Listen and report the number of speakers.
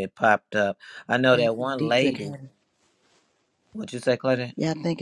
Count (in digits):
2